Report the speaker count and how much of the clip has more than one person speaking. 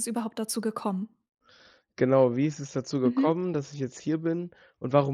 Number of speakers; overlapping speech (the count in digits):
2, about 6%